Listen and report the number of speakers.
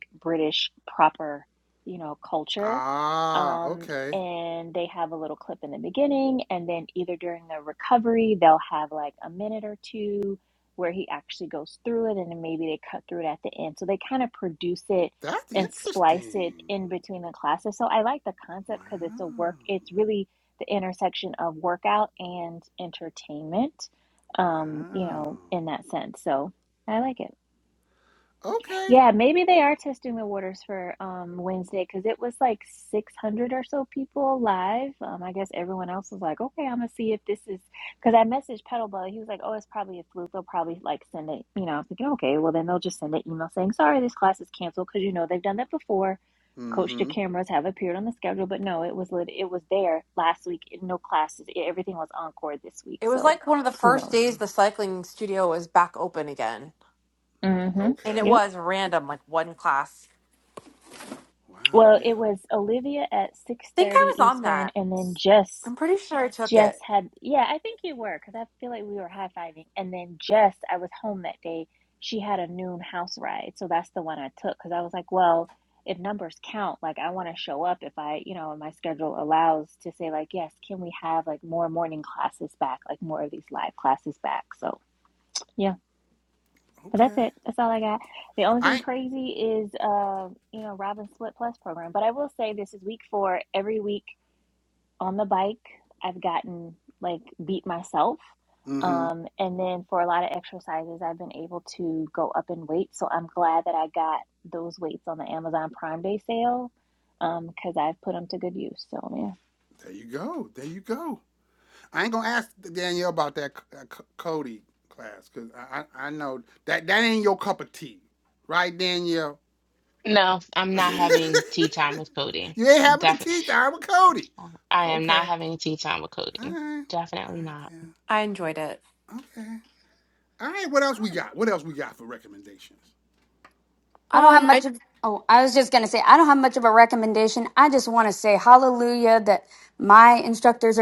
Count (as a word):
five